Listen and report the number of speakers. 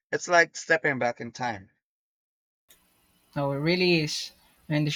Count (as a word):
two